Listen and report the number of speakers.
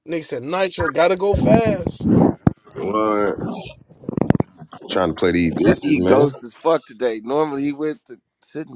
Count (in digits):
3